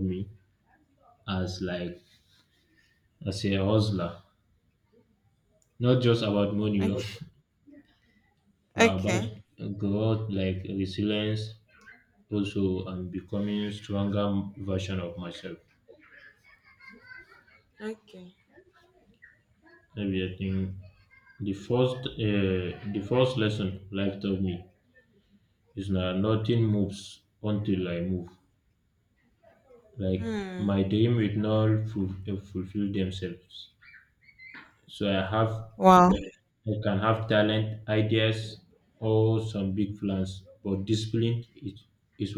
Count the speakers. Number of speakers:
two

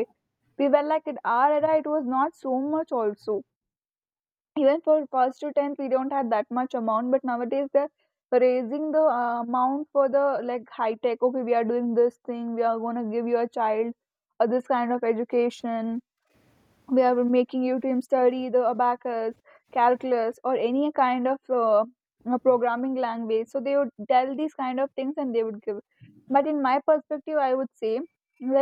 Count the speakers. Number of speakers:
one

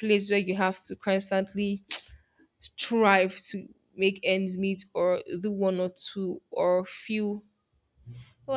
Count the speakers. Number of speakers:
one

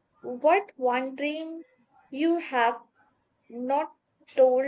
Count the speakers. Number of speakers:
one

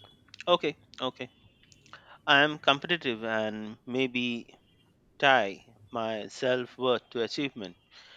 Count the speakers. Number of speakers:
one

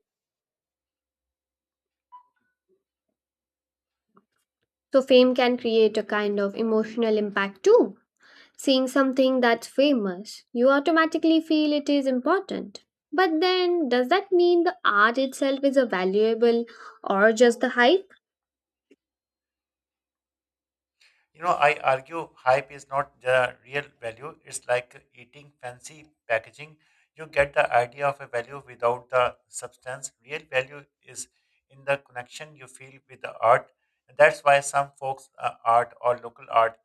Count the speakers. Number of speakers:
two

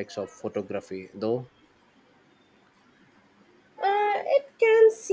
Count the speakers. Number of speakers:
two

